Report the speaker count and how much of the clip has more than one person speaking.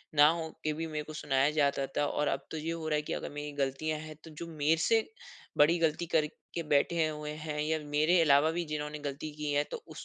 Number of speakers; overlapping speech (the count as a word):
one, no overlap